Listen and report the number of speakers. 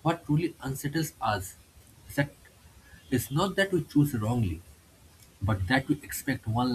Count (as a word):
one